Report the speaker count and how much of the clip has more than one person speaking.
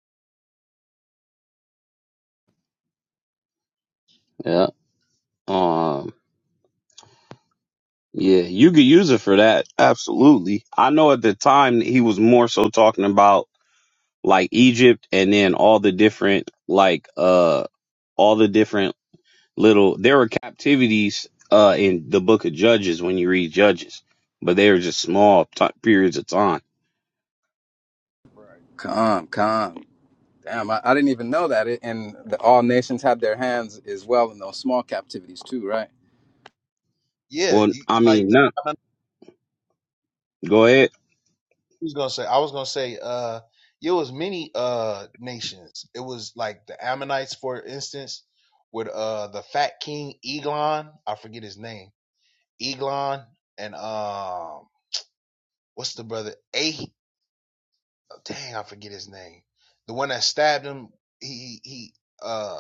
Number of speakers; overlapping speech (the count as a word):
three, about 2%